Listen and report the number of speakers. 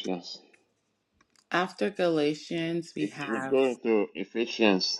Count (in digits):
2